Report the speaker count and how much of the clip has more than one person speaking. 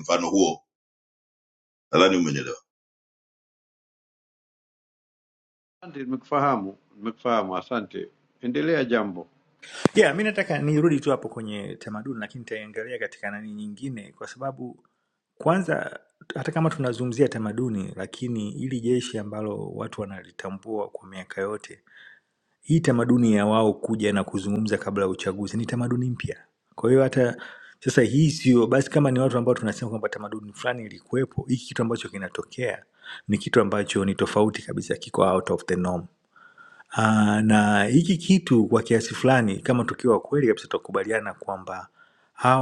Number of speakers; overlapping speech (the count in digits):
3, no overlap